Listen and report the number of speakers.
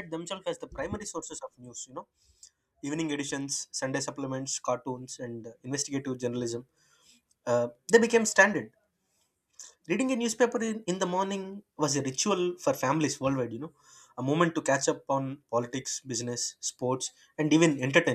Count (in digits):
1